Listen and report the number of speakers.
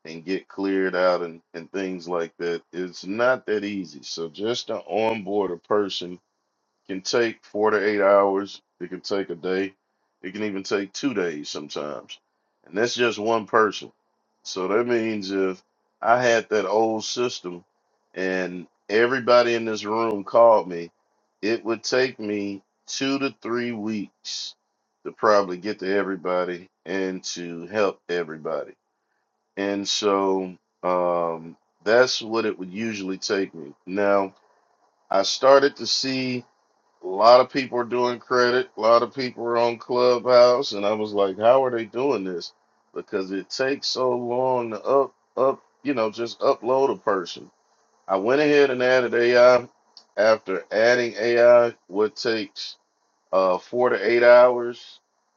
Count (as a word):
one